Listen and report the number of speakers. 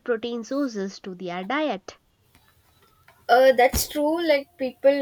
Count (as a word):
two